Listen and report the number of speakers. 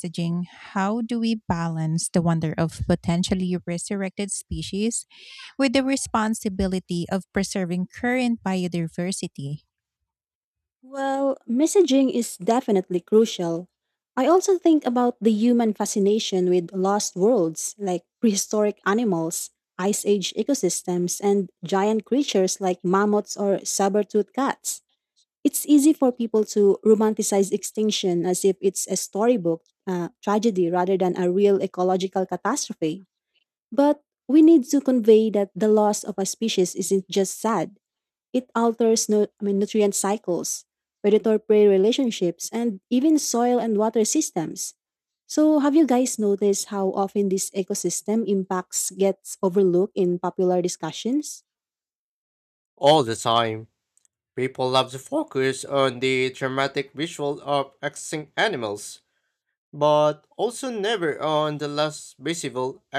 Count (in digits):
3